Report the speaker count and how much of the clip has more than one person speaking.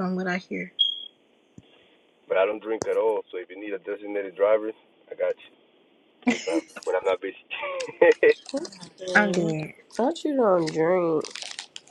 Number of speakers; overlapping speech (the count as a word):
three, about 3%